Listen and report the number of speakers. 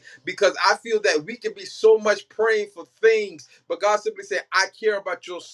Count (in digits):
1